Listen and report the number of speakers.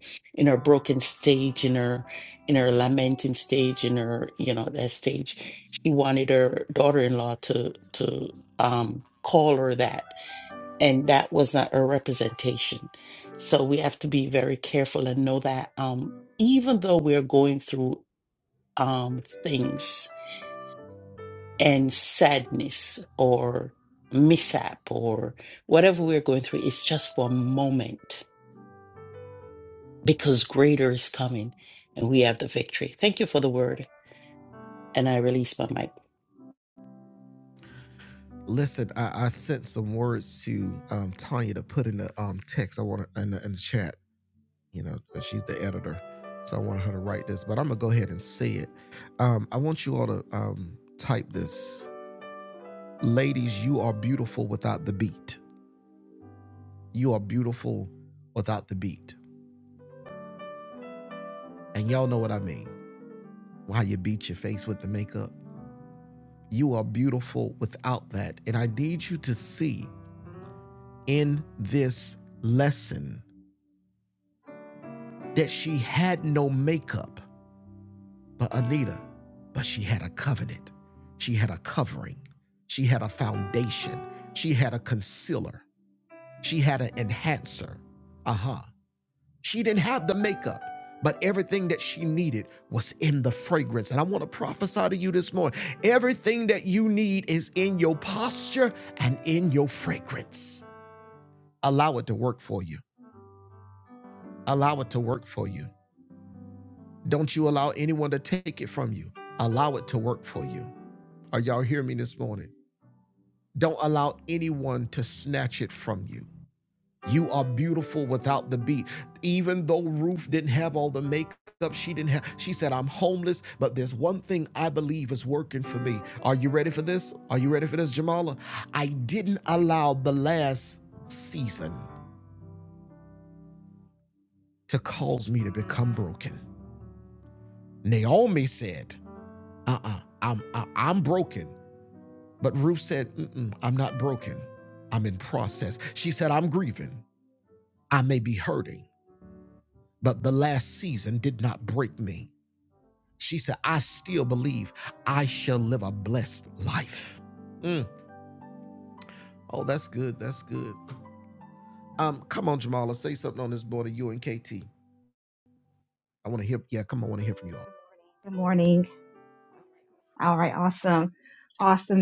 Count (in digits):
3